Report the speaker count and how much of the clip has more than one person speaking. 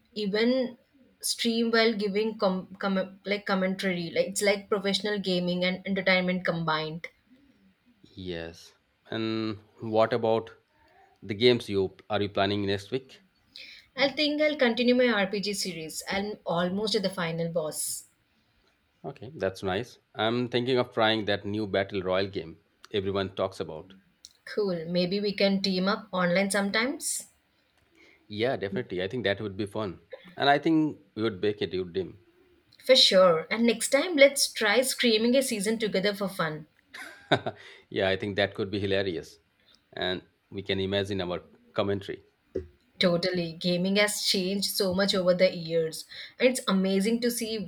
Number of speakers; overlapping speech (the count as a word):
two, no overlap